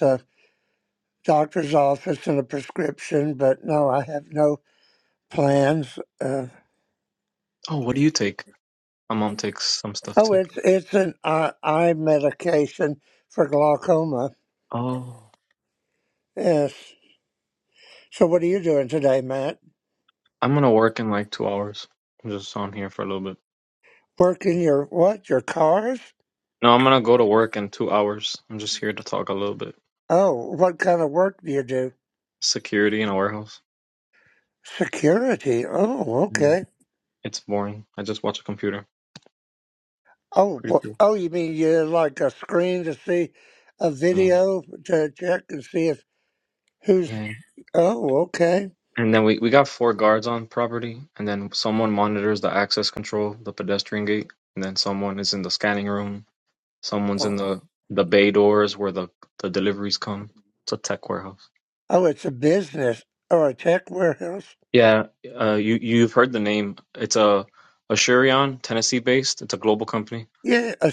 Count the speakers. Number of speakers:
two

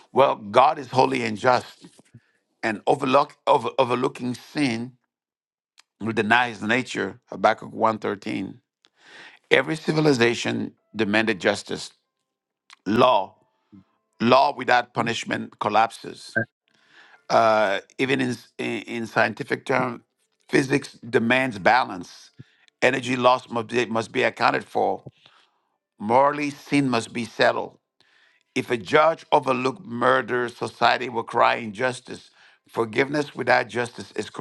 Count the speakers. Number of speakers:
one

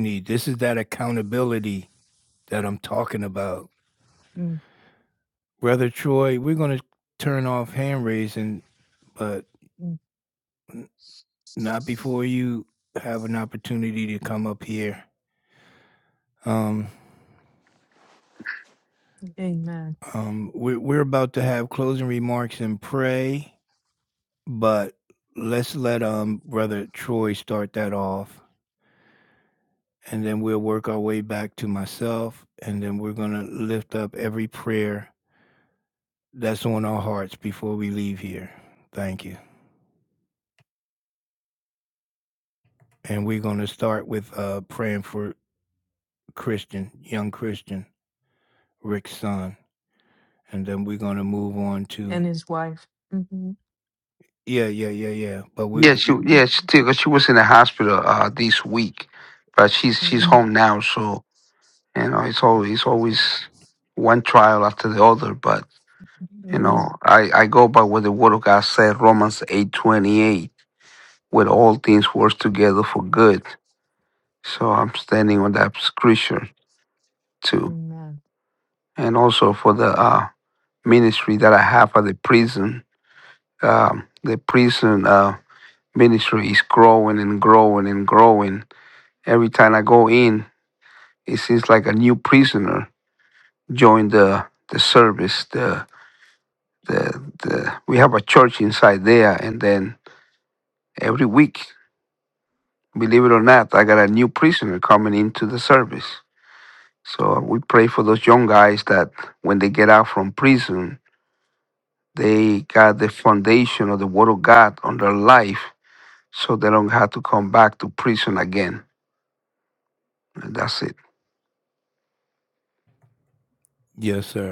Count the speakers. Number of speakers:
three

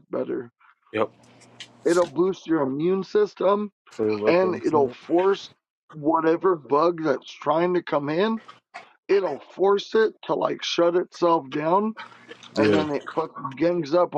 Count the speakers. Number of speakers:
two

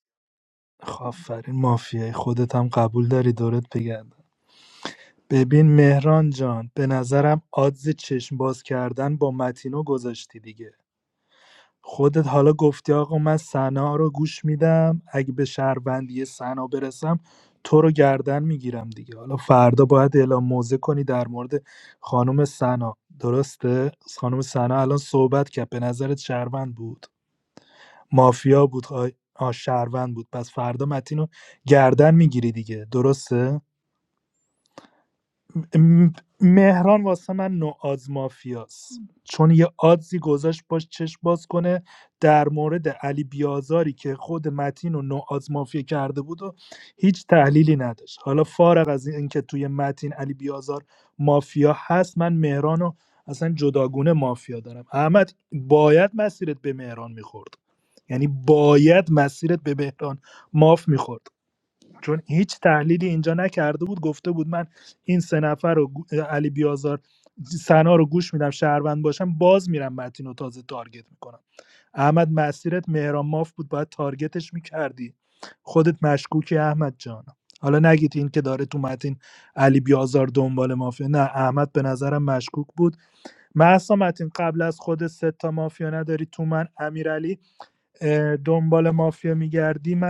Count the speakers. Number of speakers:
one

